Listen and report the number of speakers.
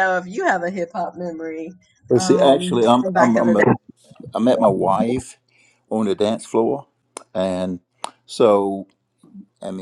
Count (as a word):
two